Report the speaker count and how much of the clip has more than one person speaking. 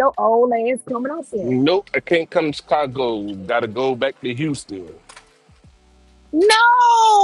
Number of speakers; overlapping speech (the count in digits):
2, about 2%